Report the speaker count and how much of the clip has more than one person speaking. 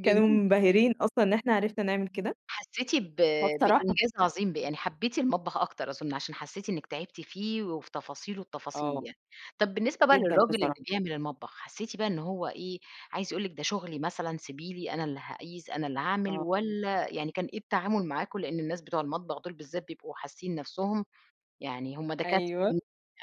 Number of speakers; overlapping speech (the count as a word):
two, about 10%